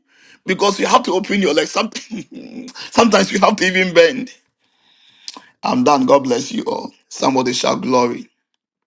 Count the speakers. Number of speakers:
1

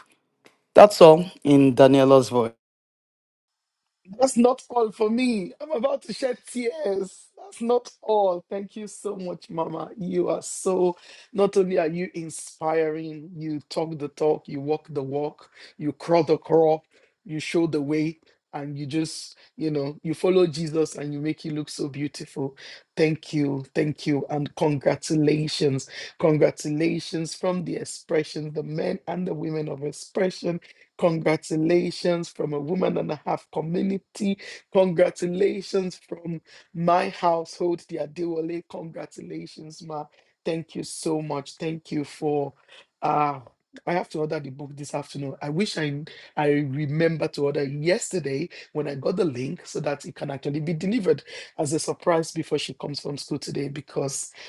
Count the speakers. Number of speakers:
2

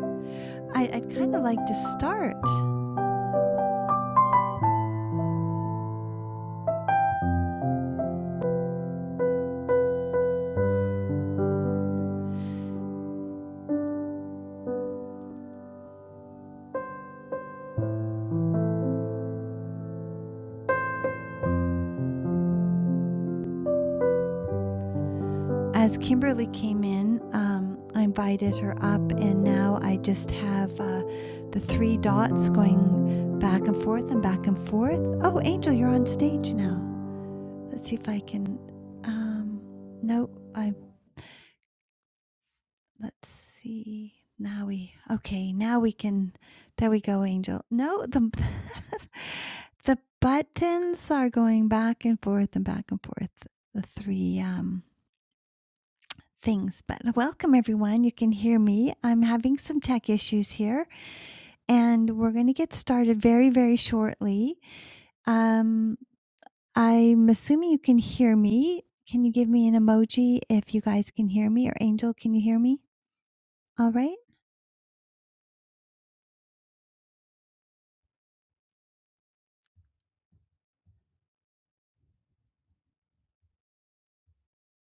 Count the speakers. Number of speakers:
1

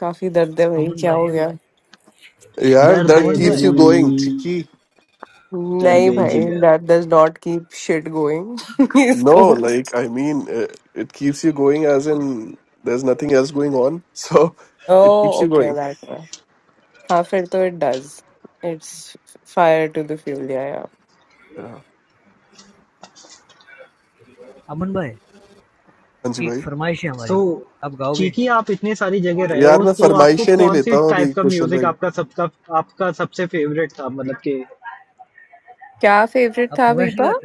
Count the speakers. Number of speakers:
4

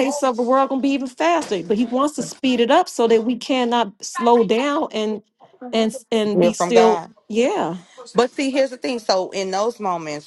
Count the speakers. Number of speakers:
2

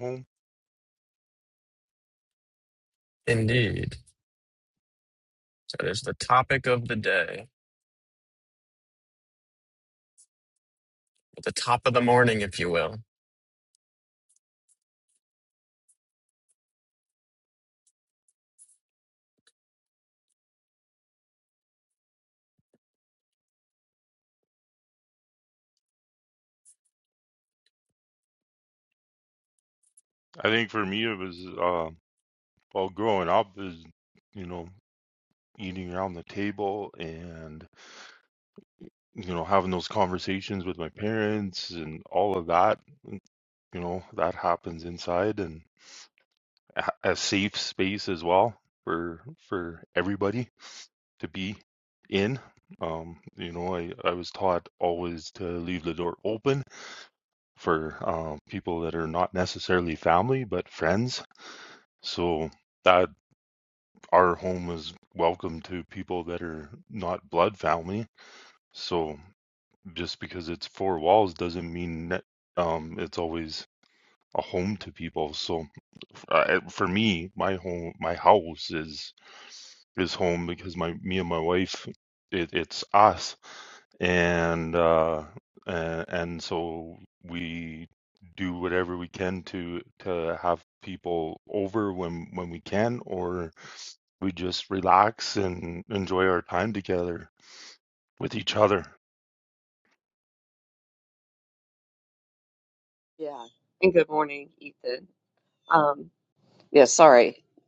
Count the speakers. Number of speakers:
3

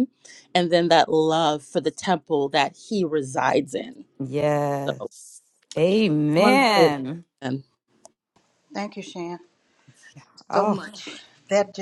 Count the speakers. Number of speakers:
3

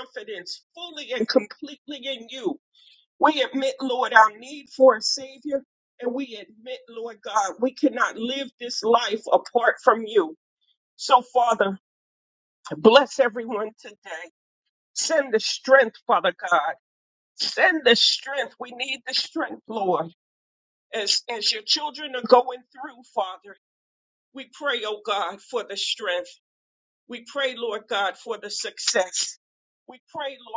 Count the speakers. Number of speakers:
1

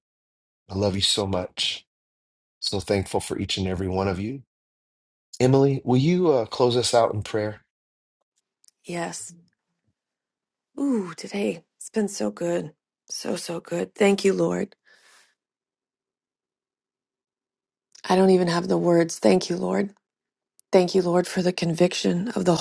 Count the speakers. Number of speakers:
2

